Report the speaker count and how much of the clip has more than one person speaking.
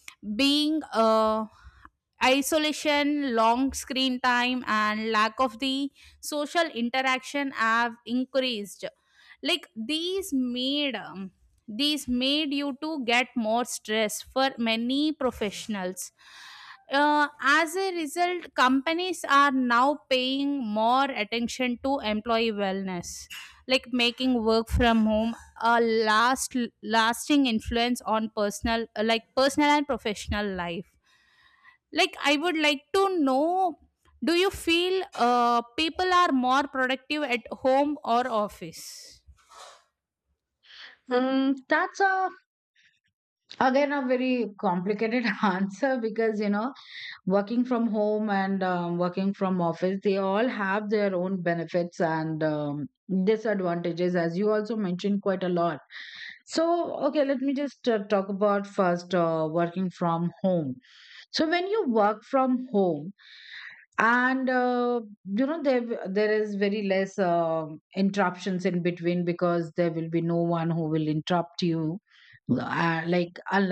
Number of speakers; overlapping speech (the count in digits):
2, no overlap